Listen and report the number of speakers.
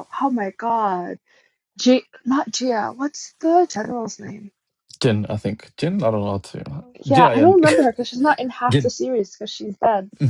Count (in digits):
2